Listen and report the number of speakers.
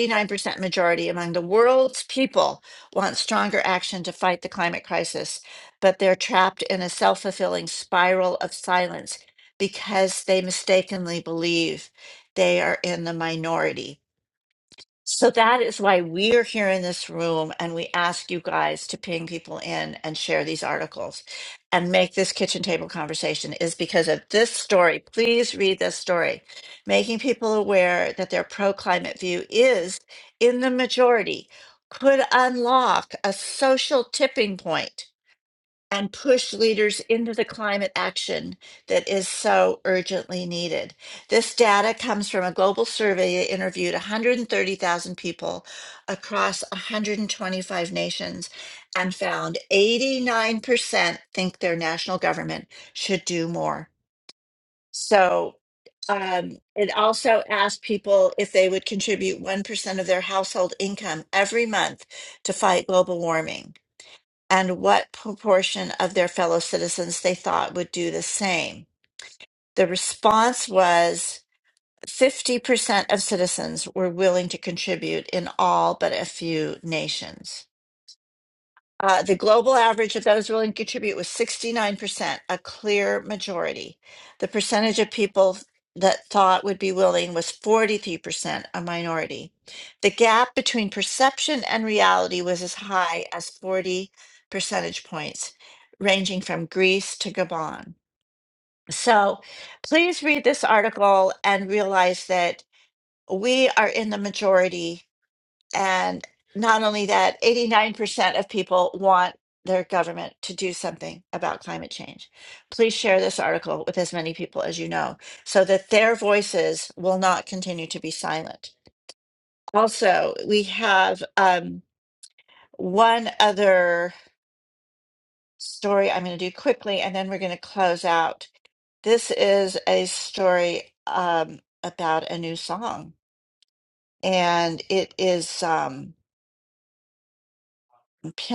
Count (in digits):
1